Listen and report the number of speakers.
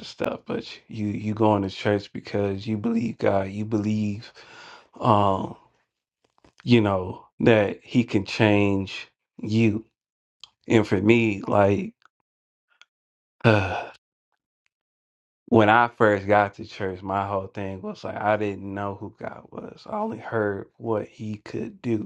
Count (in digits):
1